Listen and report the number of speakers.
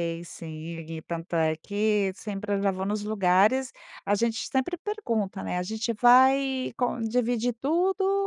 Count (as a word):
one